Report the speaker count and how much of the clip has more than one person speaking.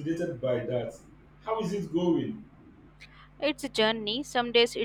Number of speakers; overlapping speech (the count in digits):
2, no overlap